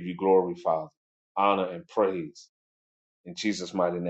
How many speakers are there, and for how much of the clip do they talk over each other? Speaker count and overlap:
one, no overlap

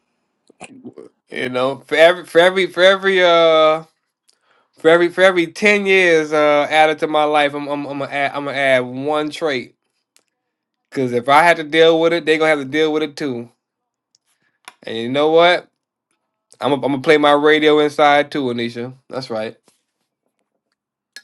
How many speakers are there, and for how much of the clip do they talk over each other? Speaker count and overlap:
one, no overlap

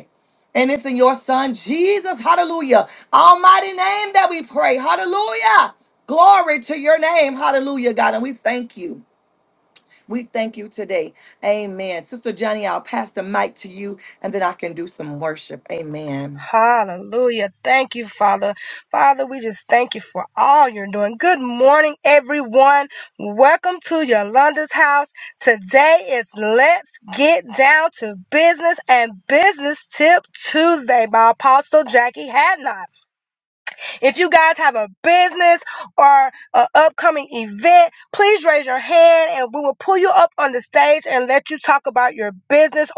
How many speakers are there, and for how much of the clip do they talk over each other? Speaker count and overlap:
two, no overlap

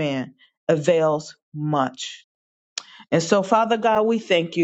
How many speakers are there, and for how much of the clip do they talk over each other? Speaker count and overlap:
one, no overlap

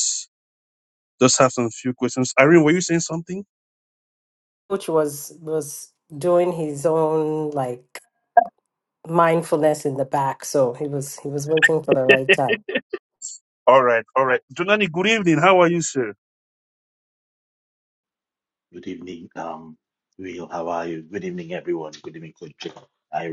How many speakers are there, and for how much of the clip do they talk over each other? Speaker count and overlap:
three, no overlap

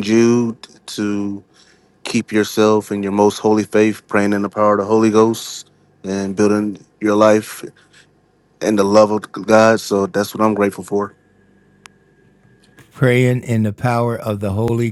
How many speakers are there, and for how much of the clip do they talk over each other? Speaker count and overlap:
two, no overlap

